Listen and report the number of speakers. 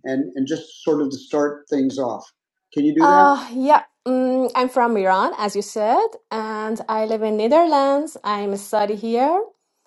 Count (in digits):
2